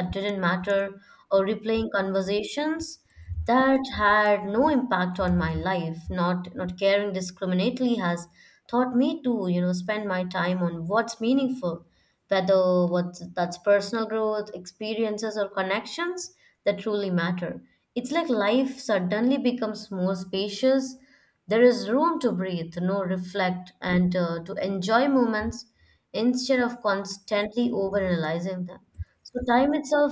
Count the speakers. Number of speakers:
1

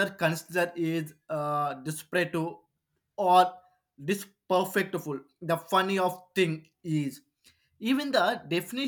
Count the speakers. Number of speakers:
1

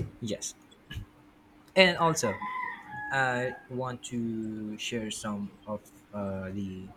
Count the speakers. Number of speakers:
1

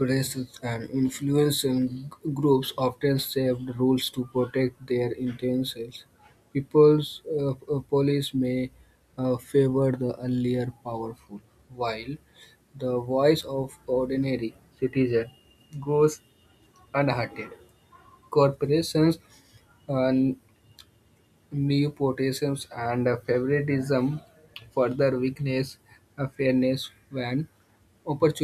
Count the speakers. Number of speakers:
1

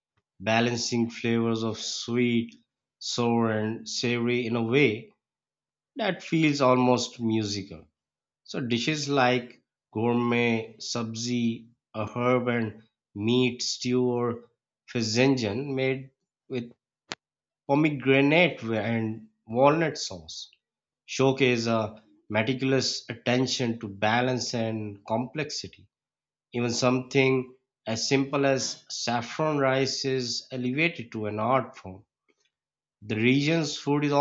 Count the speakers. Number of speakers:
1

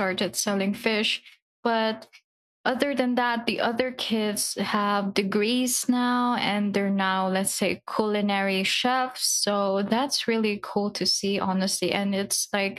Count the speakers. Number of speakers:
1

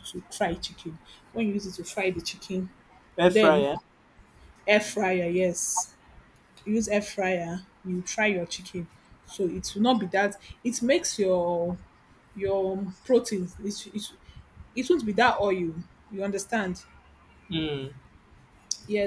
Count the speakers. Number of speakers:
2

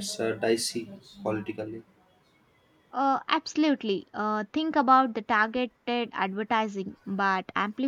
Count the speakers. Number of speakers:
2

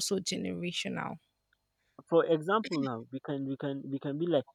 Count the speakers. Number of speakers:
2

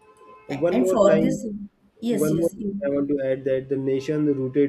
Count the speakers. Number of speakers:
2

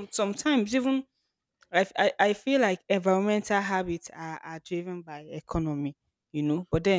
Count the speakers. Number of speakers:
1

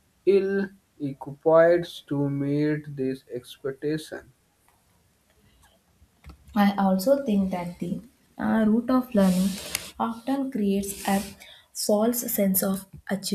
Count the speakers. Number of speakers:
2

